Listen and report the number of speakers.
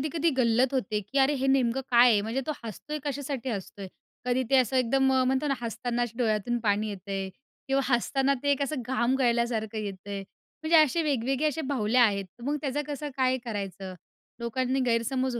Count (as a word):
one